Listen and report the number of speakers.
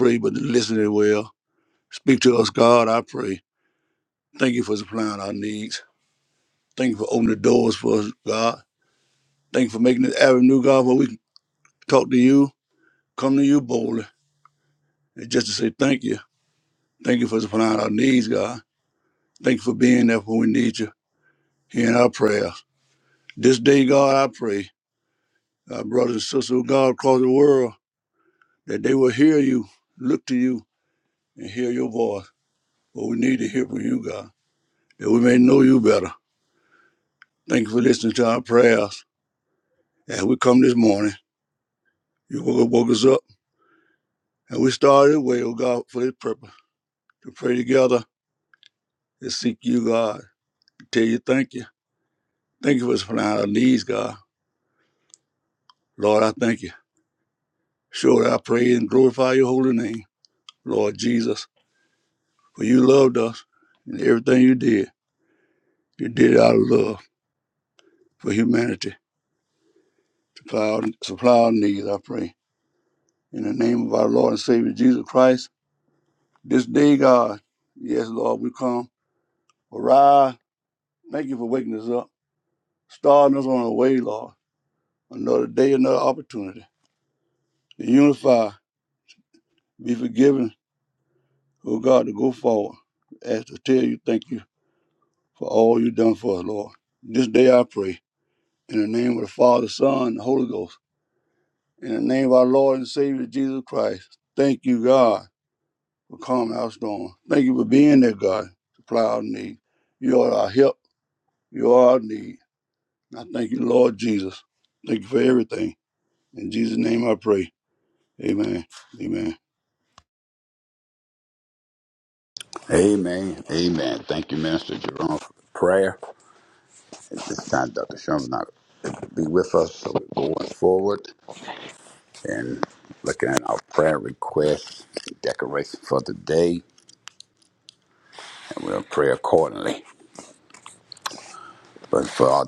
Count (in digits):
2